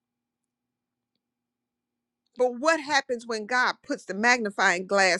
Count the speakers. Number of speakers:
1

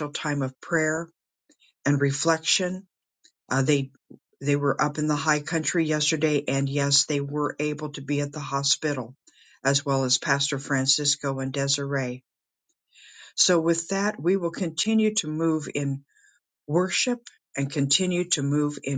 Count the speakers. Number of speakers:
1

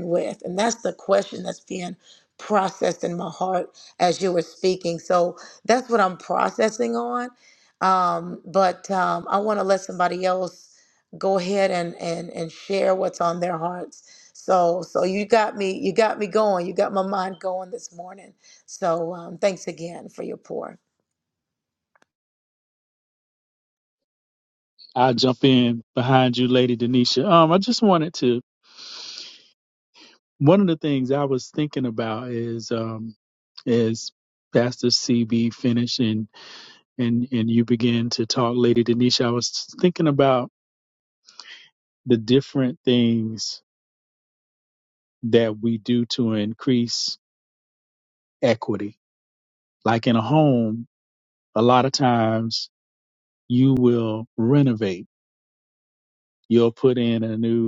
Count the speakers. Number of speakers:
2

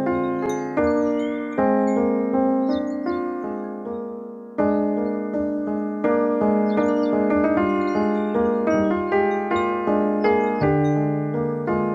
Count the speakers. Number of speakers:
0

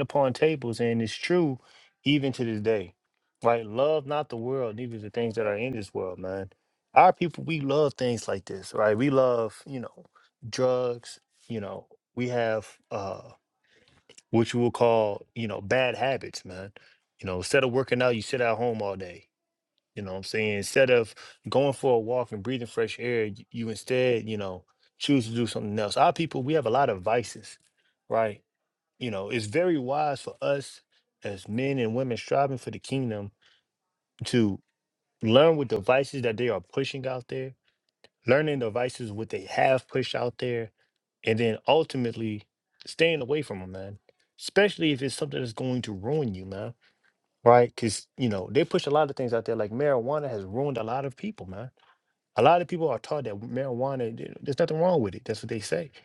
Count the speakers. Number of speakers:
1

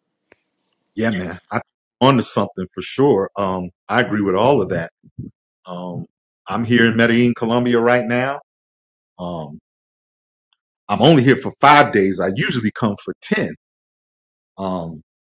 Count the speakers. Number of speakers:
1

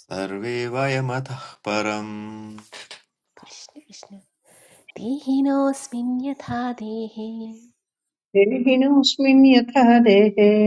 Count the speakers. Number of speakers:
3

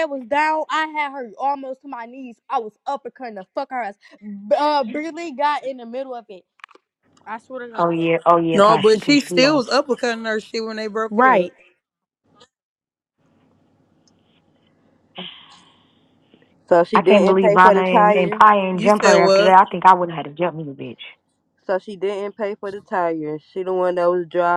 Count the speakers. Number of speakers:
4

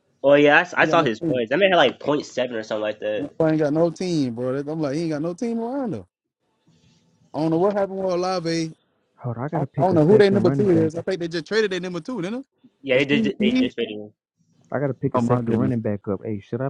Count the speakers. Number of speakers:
3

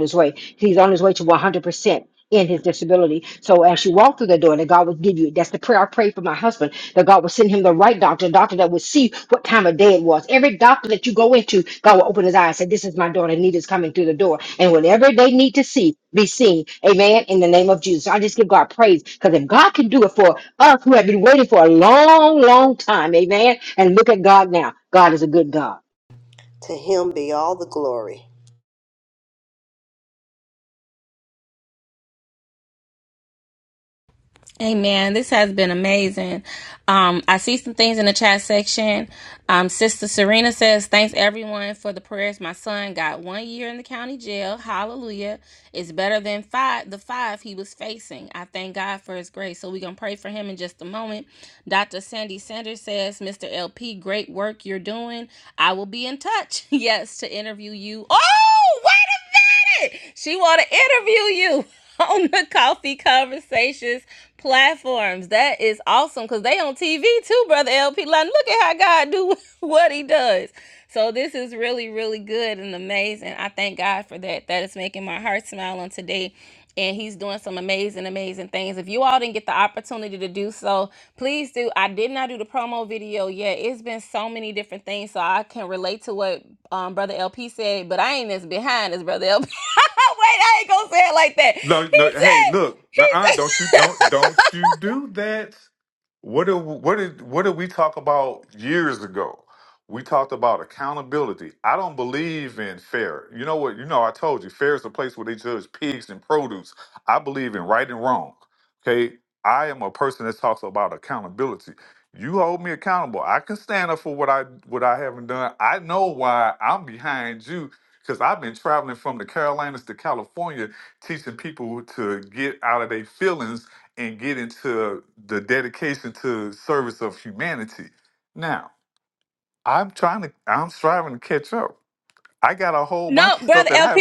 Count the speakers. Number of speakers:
4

